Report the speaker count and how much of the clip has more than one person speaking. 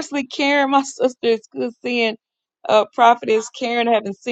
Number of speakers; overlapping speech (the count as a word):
one, no overlap